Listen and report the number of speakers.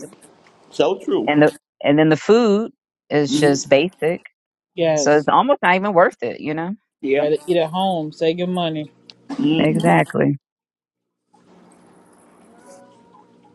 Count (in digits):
3